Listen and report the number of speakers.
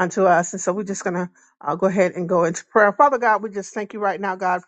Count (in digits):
1